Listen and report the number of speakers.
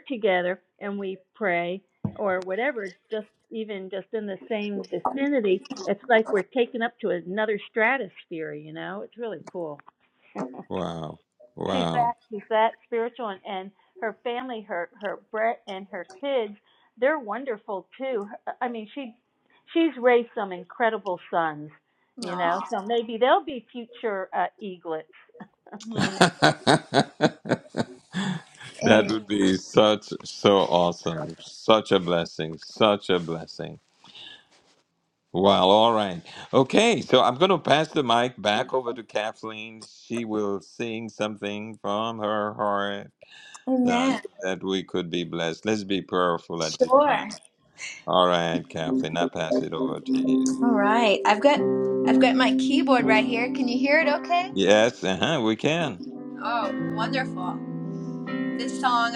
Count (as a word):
three